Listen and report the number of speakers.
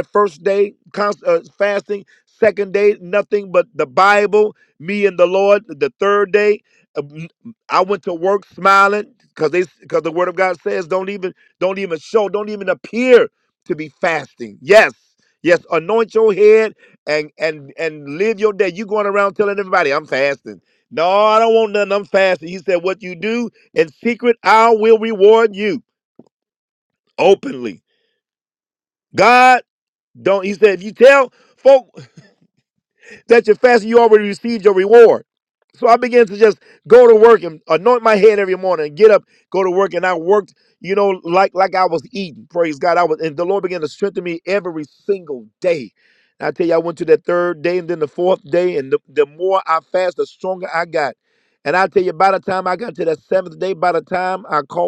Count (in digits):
1